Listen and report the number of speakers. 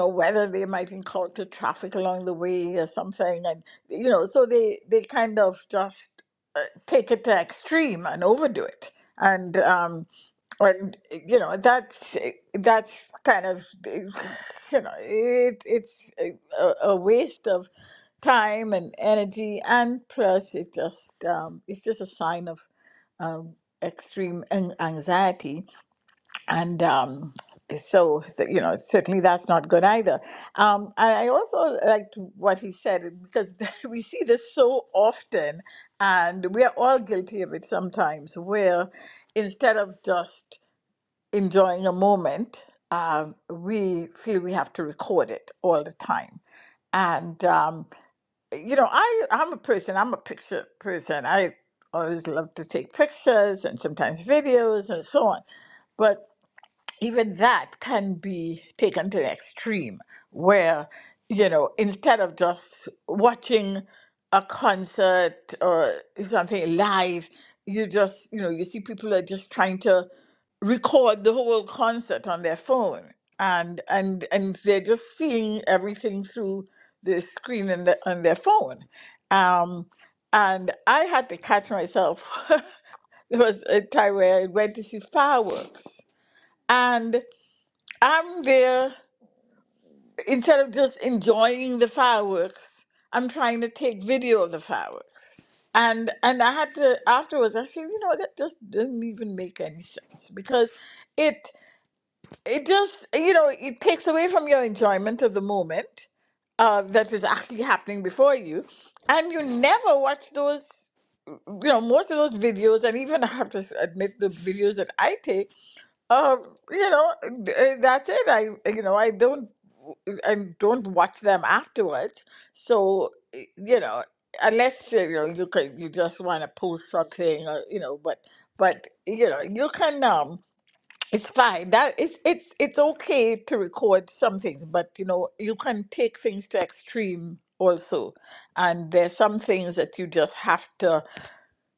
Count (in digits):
1